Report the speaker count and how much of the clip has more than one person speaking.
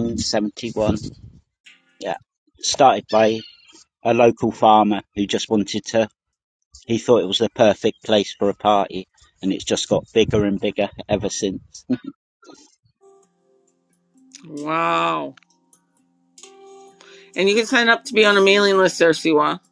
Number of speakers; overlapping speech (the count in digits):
2, no overlap